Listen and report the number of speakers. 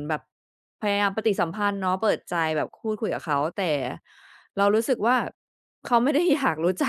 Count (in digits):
1